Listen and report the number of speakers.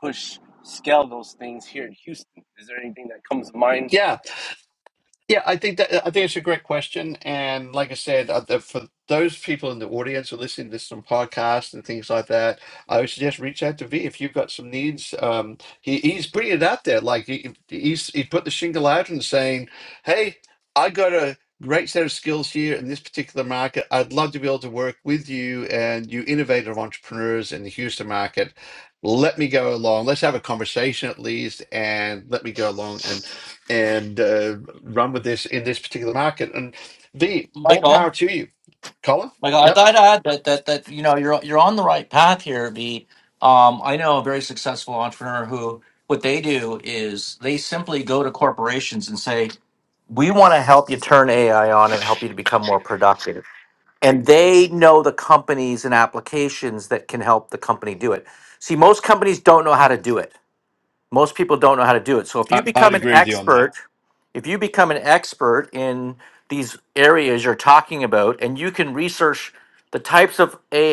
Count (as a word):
three